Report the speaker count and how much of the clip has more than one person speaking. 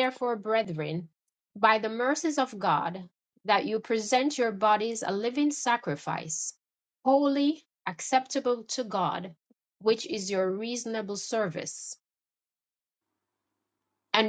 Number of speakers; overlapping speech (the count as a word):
one, no overlap